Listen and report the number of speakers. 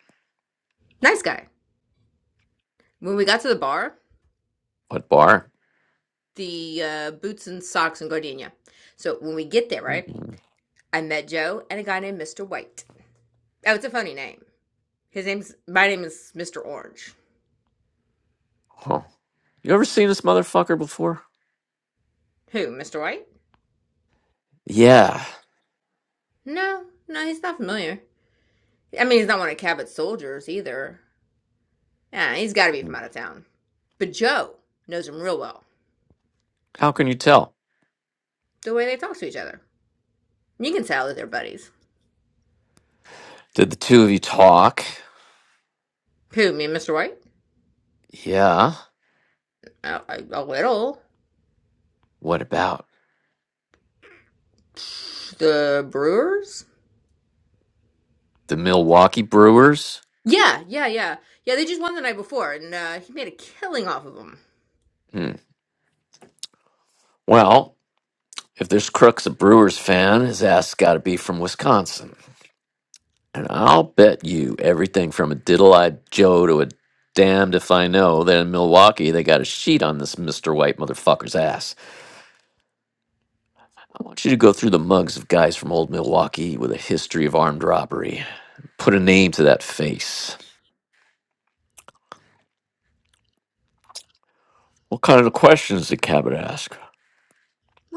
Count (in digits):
2